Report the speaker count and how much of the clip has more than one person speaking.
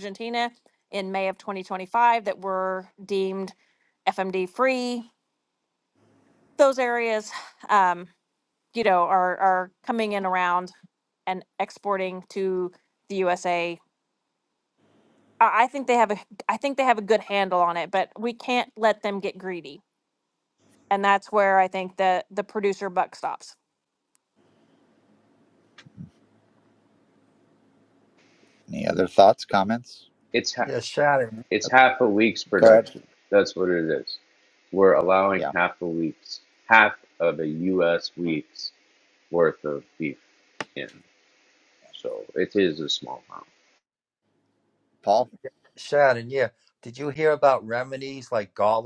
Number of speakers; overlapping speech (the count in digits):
4, about 1%